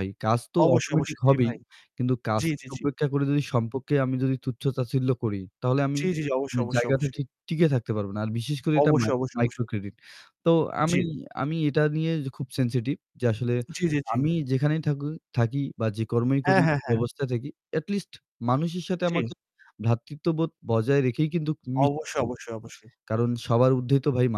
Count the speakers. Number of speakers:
2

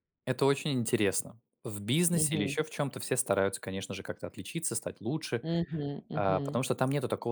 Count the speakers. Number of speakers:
2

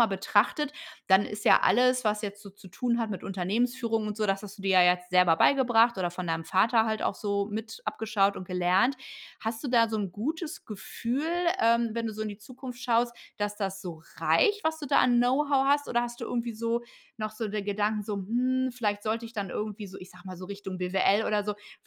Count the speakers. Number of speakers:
1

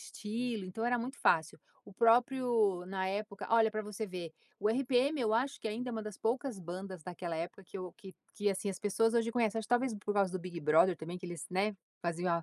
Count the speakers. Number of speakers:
1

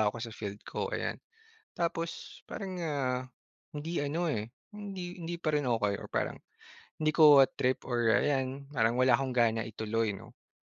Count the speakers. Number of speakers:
1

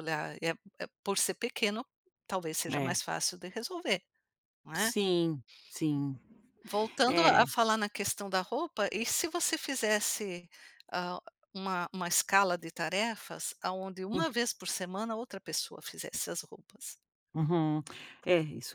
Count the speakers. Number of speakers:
2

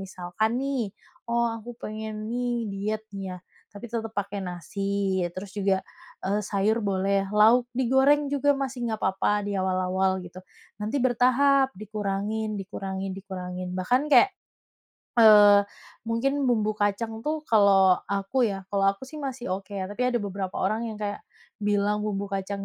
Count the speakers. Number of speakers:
1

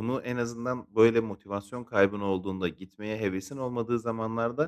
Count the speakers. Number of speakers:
1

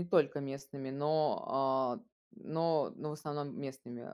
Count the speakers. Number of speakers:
1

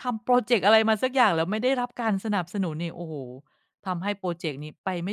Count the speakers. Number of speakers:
1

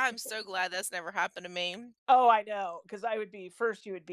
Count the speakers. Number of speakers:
2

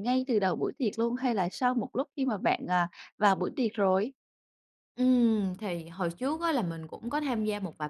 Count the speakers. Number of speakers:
2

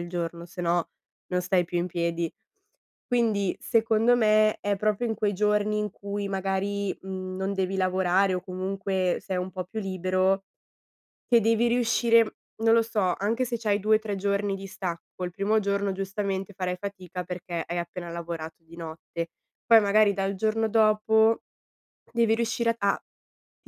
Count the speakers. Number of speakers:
1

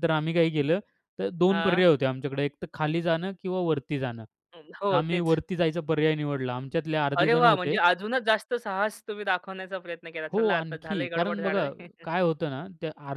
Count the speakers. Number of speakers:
2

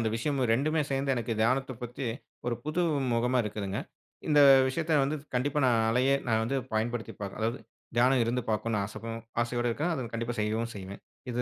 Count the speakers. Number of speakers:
1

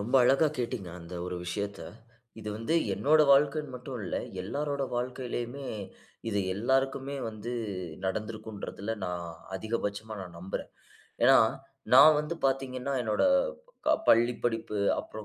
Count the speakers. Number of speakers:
1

